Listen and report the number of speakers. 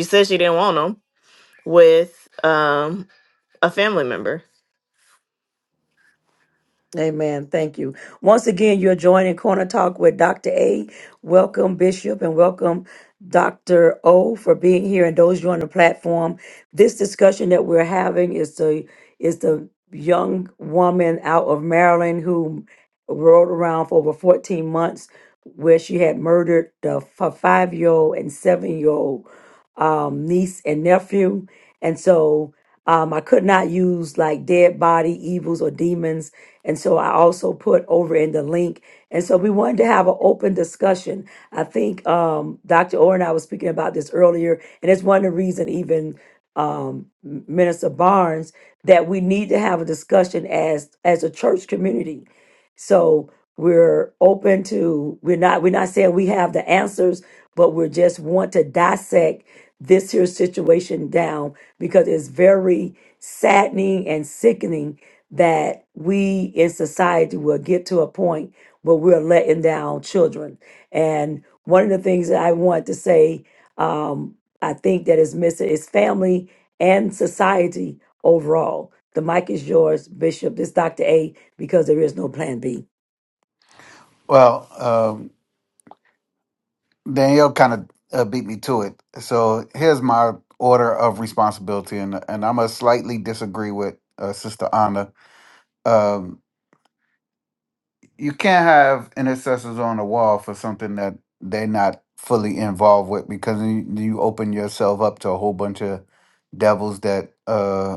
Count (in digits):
3